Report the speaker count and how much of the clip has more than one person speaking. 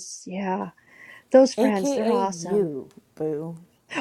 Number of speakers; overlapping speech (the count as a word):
two, about 28%